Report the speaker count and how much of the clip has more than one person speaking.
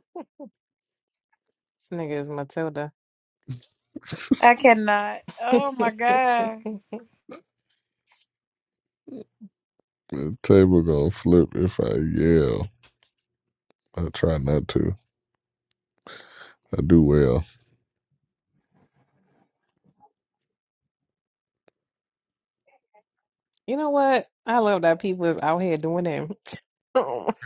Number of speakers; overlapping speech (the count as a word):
three, no overlap